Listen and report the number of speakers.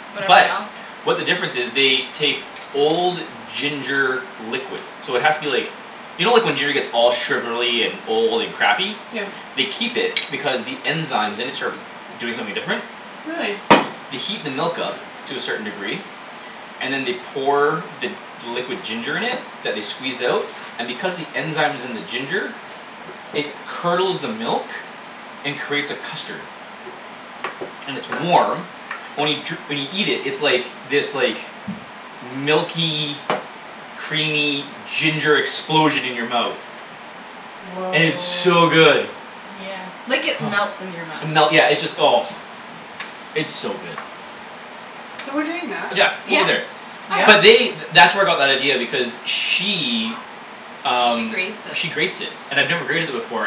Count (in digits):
3